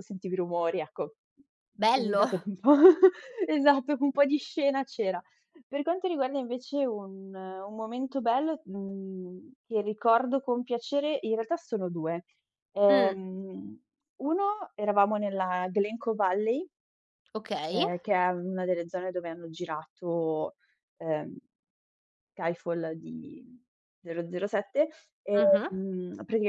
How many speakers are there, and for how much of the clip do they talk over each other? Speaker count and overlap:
2, about 5%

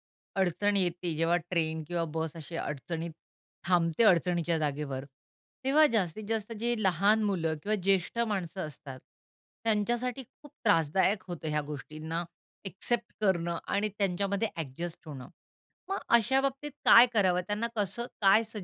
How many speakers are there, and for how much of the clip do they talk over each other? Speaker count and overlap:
1, no overlap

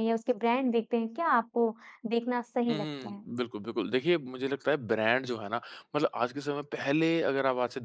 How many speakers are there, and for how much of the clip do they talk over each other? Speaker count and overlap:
2, about 6%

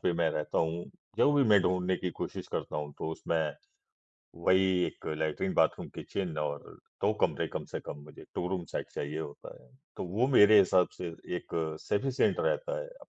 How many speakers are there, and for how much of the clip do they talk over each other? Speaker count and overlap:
1, no overlap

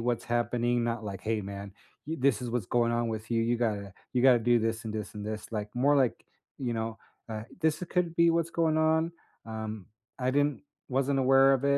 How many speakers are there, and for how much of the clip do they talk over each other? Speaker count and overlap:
1, no overlap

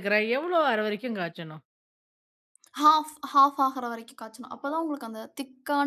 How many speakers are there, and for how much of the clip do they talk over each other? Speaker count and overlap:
2, no overlap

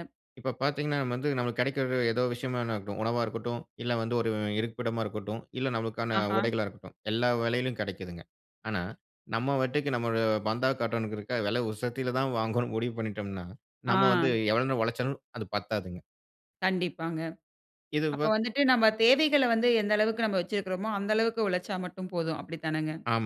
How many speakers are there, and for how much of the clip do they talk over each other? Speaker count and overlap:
2, about 4%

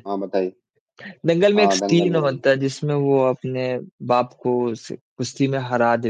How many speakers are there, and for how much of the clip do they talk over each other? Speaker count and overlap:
2, about 14%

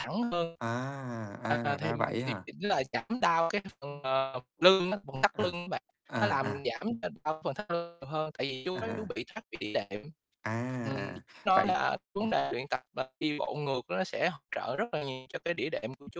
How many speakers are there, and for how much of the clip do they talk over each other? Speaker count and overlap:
2, about 15%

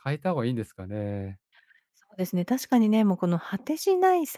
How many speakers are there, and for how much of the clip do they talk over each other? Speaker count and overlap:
2, no overlap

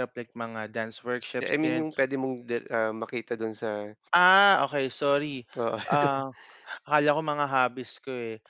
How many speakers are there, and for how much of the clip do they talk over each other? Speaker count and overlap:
2, about 5%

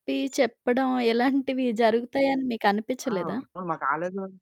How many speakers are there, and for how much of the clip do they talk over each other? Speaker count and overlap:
2, about 9%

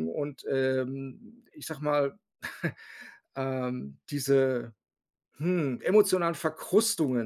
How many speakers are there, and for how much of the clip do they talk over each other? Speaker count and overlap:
1, no overlap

